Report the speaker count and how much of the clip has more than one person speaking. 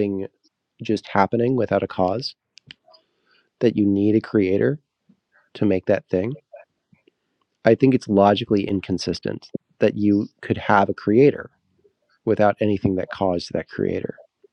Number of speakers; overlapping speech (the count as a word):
one, no overlap